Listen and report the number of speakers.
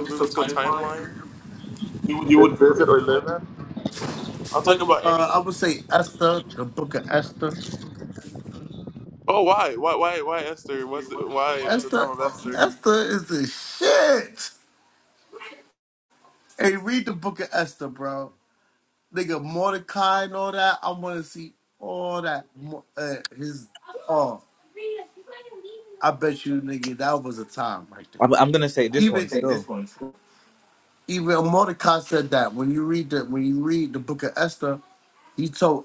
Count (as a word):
three